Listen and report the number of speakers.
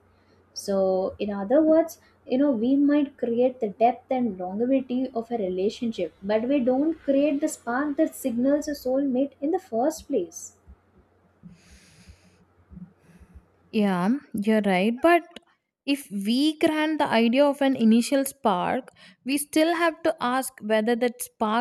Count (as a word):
two